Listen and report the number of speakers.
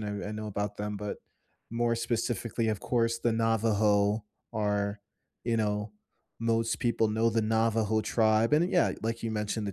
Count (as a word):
one